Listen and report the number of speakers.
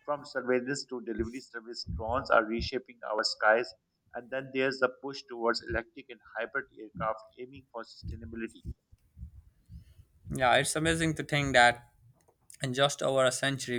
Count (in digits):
2